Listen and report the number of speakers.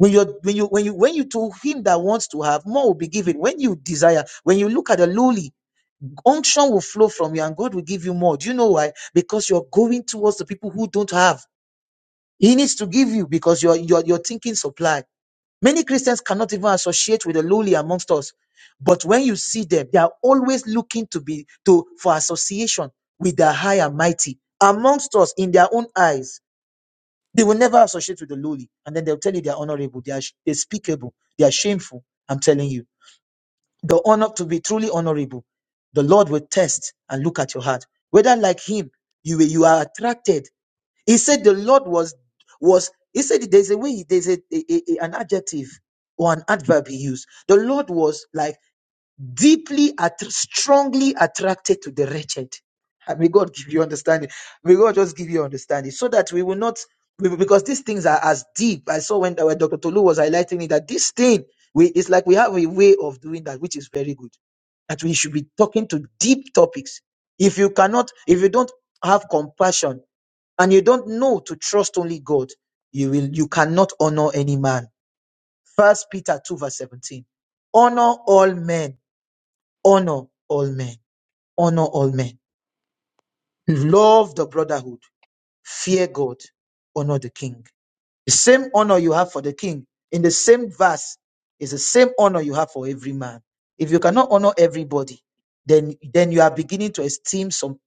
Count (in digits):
1